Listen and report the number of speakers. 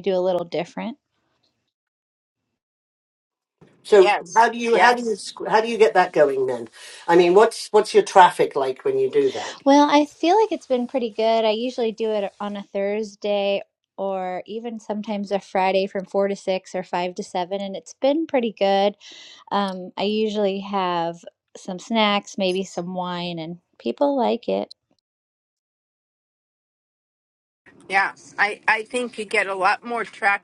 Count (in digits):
3